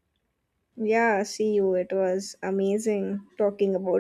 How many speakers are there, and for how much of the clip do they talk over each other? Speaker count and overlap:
one, no overlap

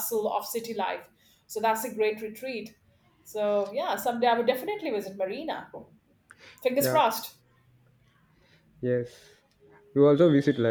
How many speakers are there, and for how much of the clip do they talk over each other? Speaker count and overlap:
two, about 2%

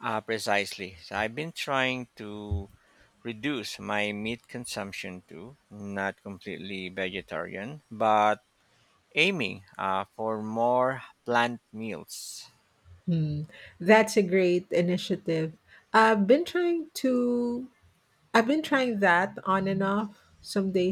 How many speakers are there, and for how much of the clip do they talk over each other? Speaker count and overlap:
two, no overlap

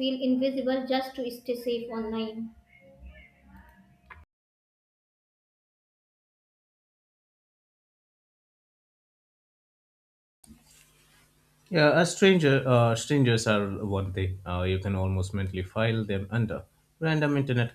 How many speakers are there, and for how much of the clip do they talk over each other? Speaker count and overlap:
two, no overlap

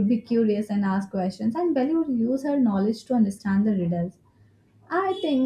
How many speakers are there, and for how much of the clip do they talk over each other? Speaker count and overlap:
one, no overlap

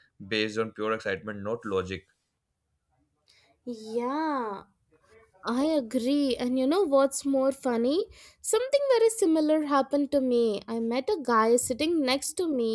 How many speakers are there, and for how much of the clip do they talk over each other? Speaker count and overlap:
two, no overlap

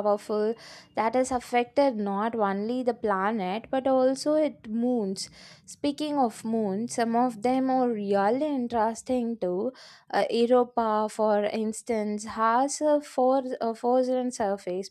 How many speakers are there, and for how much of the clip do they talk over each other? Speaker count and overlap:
one, no overlap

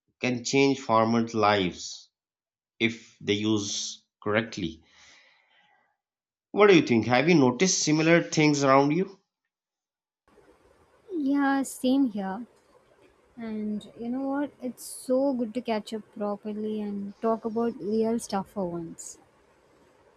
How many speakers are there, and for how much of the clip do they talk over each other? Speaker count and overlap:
two, no overlap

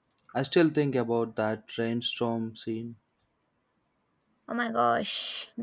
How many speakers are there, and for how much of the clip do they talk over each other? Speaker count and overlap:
two, no overlap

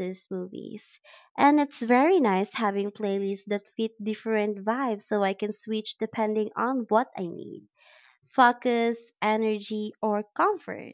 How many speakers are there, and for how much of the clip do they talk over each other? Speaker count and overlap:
one, no overlap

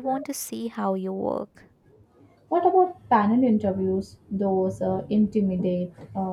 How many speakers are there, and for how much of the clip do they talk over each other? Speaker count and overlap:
two, no overlap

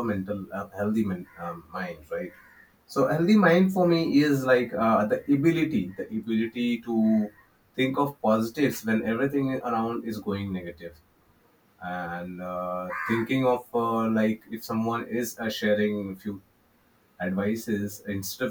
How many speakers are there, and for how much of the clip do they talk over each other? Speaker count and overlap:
one, no overlap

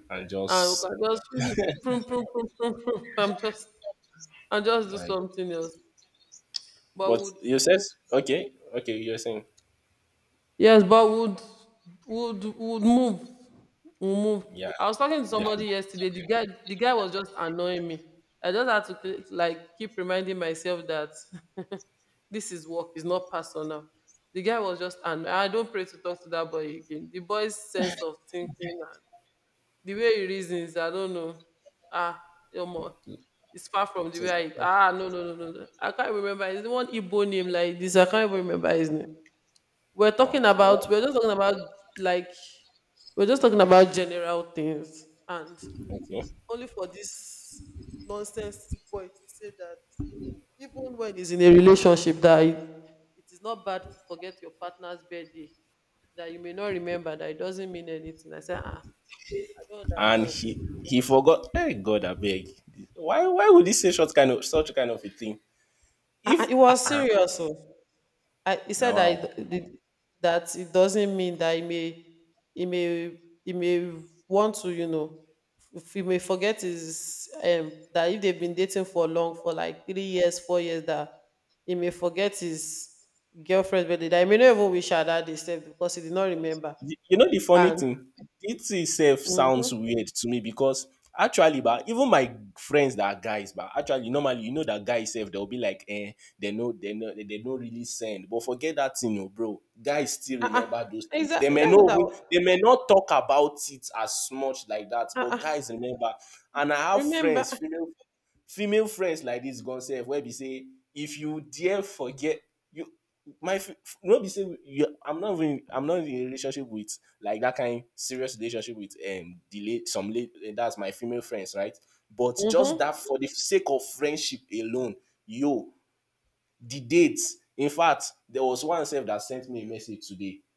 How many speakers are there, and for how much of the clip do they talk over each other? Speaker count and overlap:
two, about 6%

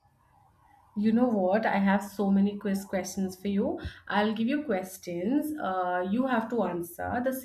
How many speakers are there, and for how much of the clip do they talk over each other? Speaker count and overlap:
one, no overlap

